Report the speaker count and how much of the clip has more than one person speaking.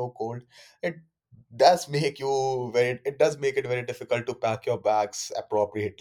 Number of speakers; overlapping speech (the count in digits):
1, no overlap